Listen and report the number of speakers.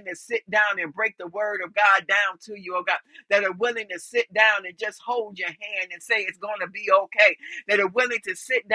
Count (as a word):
one